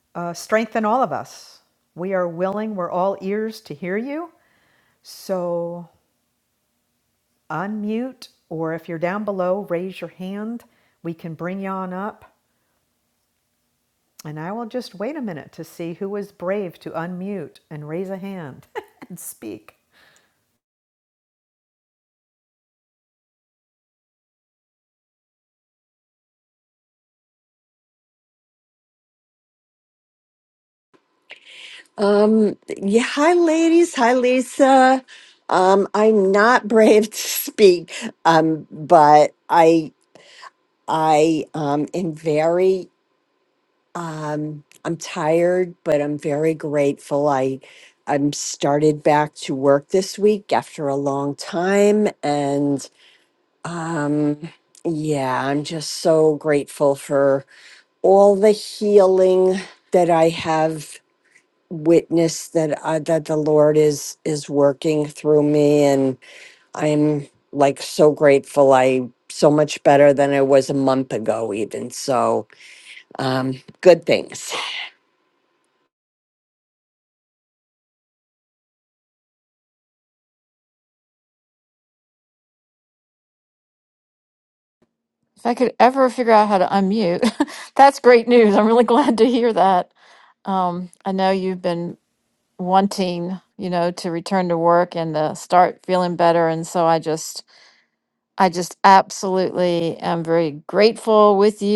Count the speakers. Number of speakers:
three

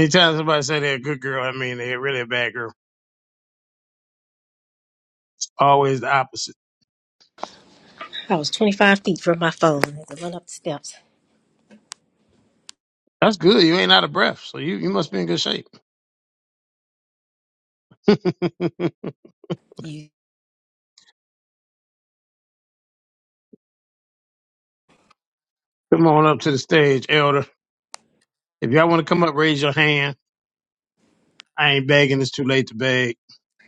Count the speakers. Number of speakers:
two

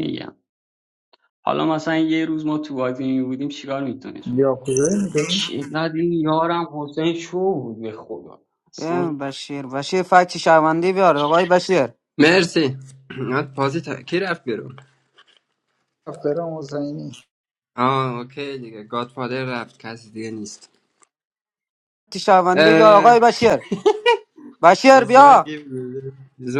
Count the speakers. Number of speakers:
four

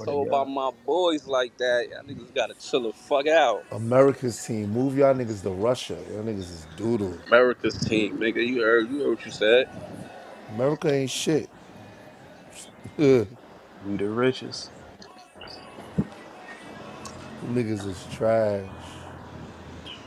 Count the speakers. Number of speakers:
three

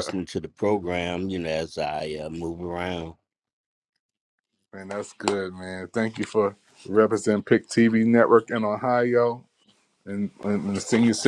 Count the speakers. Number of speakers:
two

